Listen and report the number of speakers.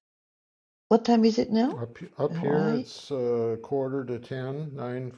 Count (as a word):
two